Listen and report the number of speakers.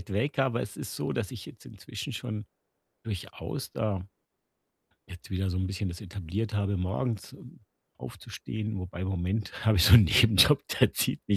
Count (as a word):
one